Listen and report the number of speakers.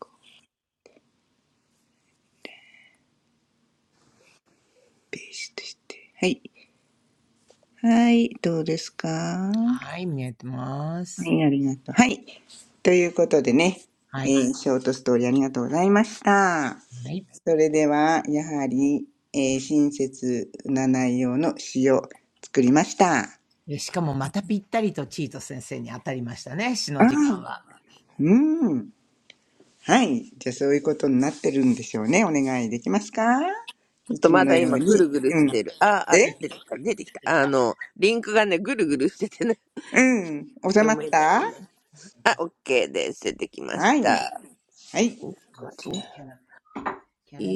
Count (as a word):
three